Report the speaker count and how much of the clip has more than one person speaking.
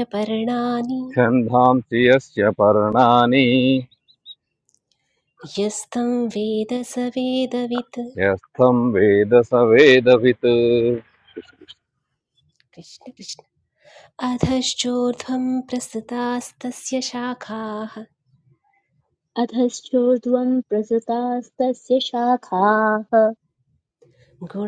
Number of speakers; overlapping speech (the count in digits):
3, no overlap